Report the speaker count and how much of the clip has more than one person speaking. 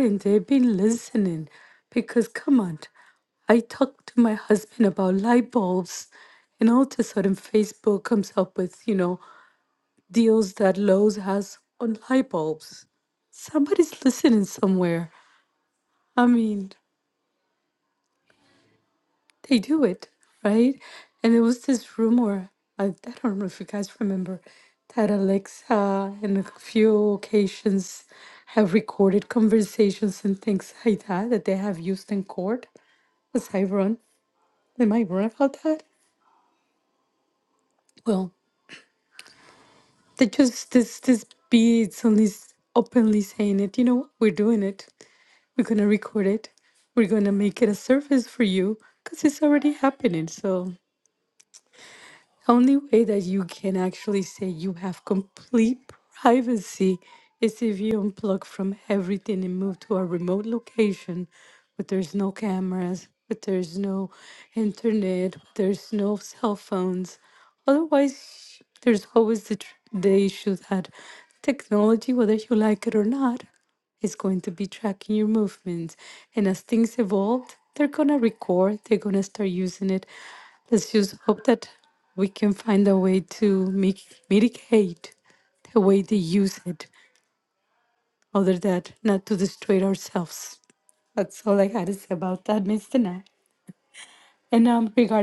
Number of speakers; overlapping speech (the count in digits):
1, no overlap